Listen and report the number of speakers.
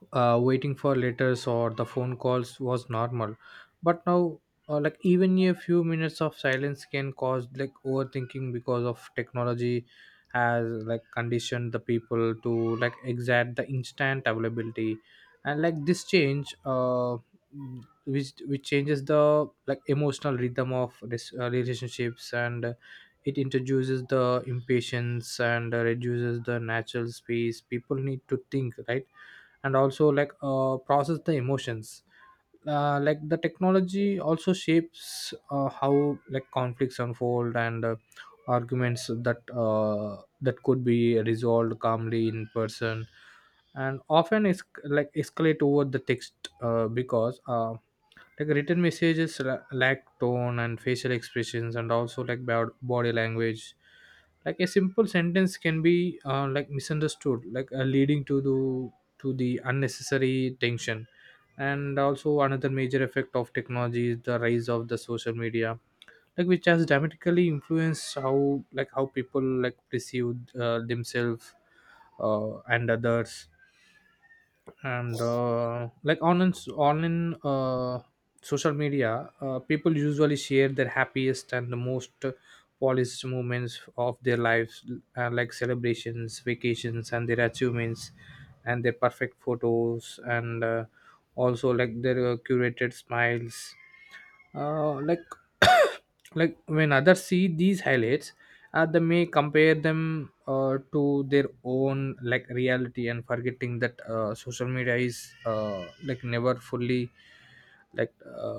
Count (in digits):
1